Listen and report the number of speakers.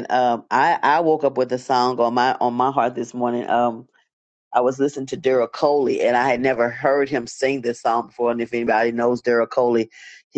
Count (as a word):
one